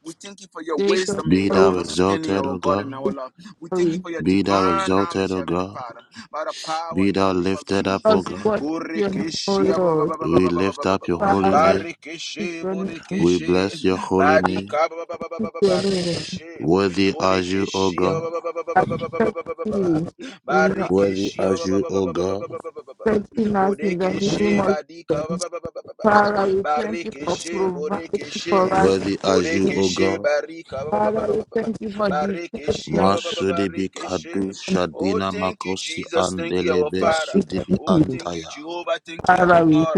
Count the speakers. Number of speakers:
3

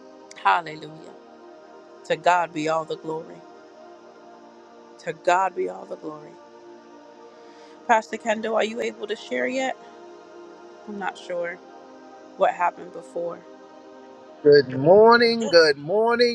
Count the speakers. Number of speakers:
2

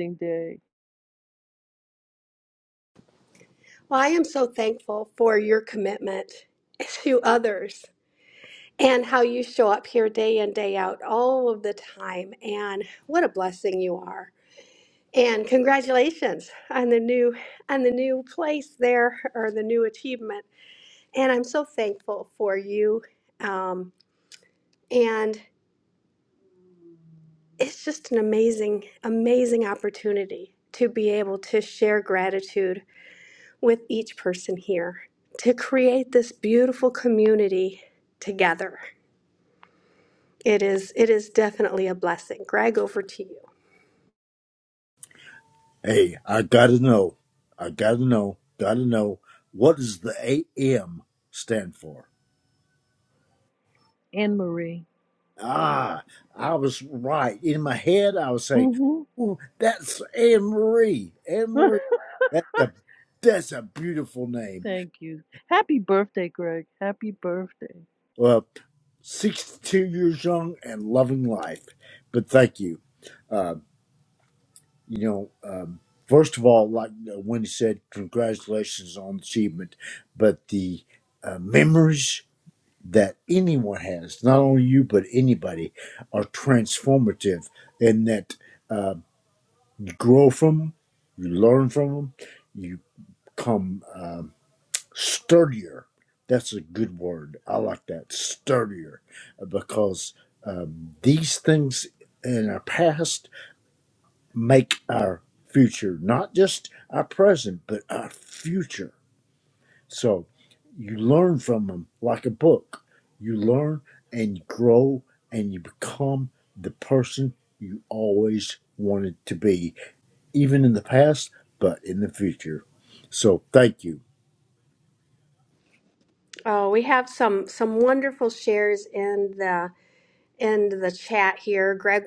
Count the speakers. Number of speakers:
3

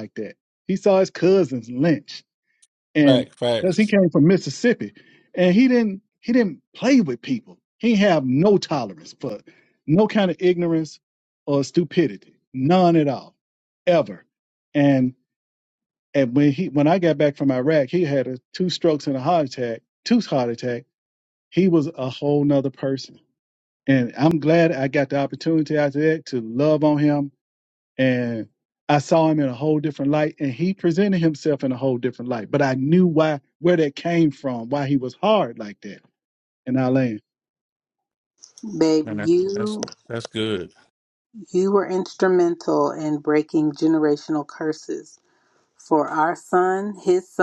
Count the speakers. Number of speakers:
3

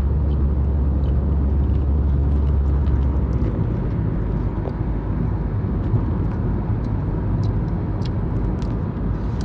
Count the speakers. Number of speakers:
0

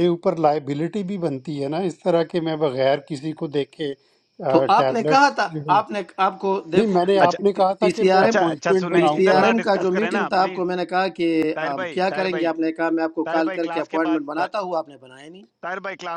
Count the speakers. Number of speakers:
3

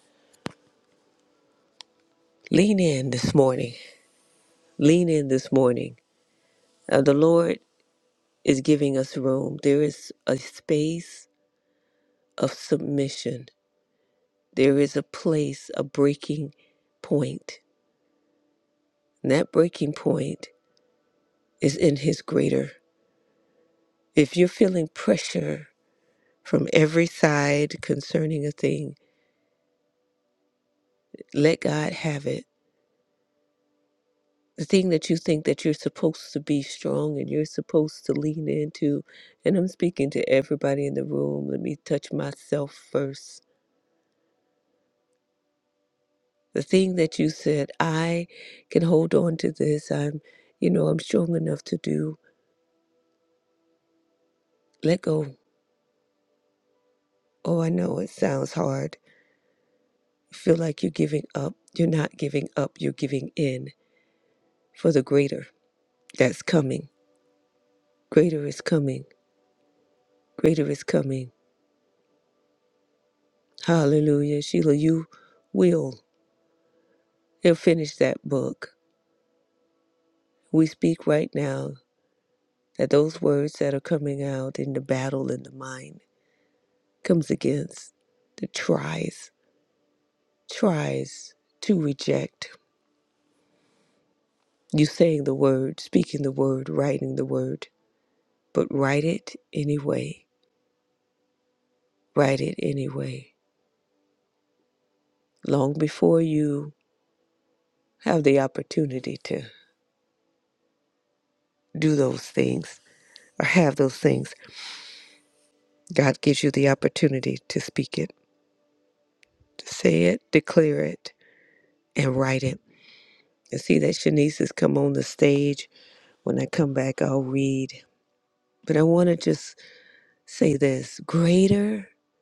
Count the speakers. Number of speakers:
1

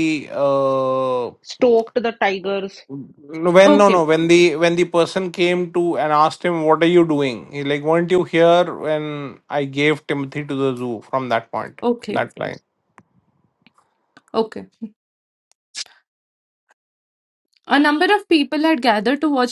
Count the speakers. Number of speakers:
3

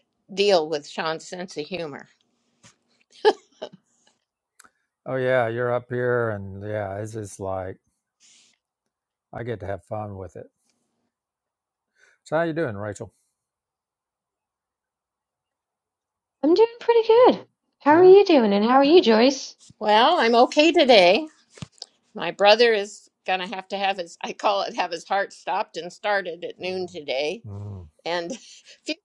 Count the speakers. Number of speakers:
3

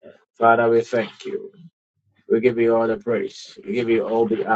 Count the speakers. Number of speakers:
1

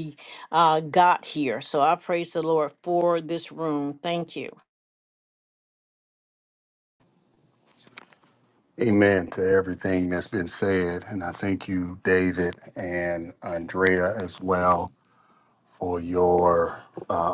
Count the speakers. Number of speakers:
2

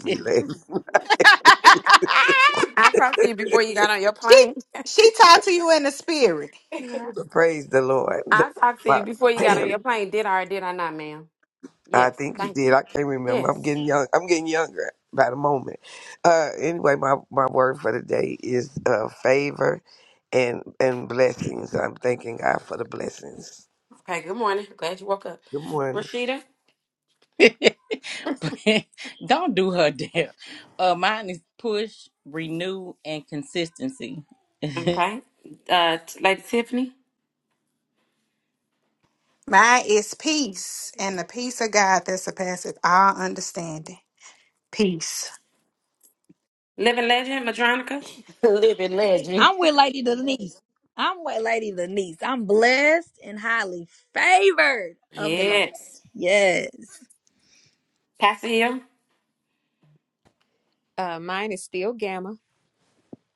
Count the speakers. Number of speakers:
7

